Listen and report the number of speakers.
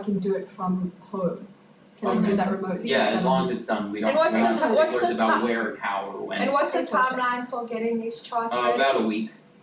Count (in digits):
3